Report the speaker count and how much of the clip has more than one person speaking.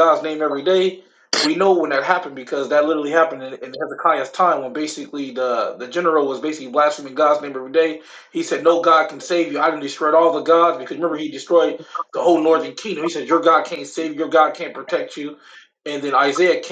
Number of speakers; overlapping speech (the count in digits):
1, no overlap